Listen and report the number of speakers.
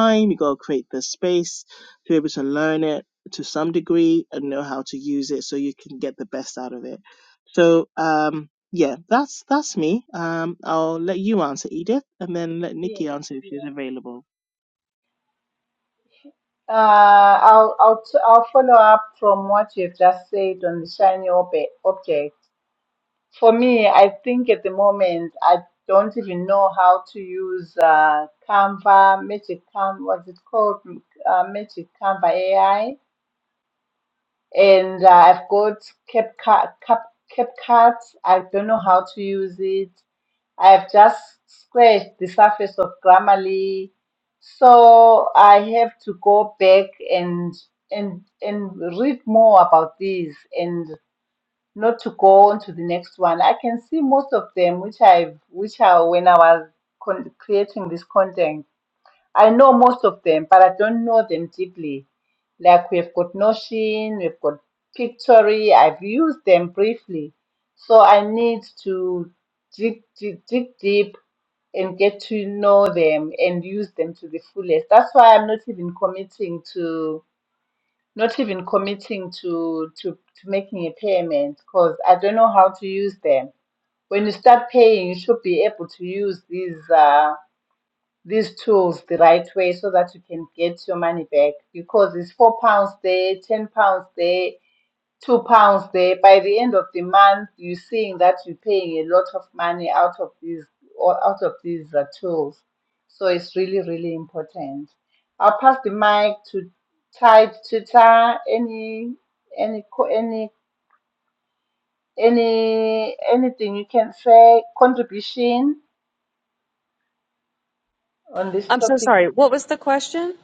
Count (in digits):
3